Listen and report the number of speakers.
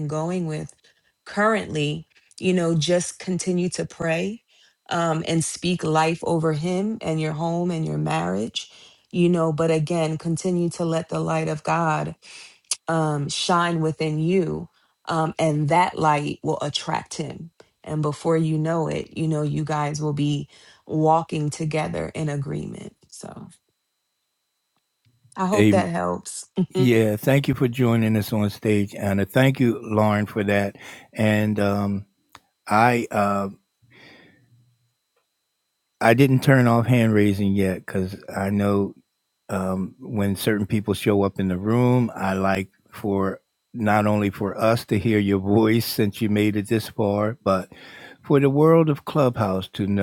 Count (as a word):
two